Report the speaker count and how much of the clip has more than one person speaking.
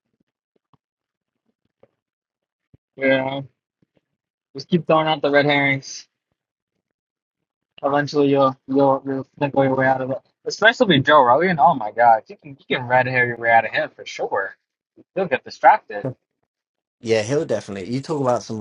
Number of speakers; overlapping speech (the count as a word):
two, under 1%